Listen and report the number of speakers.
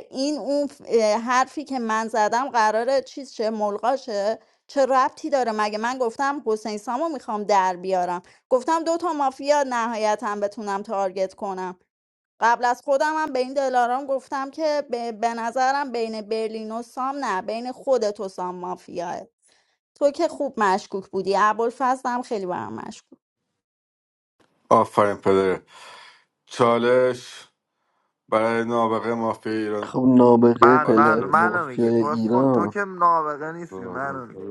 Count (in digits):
4